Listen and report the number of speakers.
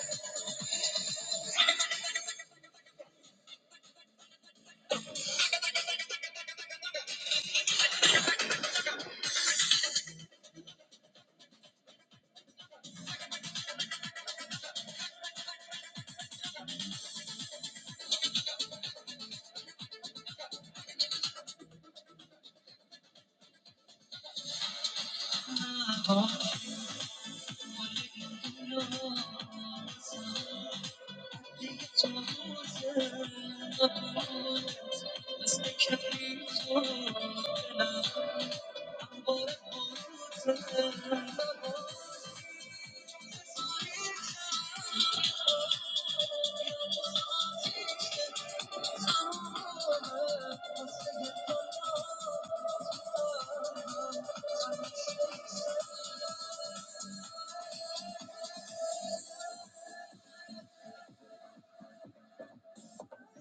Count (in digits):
0